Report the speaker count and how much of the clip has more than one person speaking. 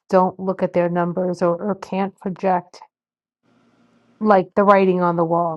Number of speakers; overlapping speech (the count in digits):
1, no overlap